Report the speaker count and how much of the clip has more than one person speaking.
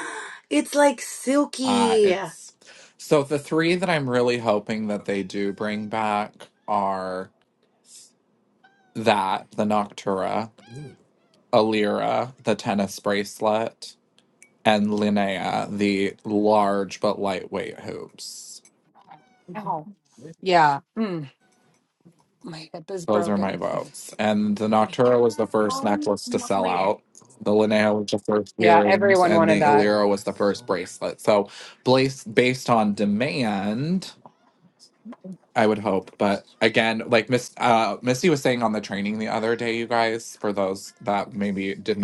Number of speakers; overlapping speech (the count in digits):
3, about 5%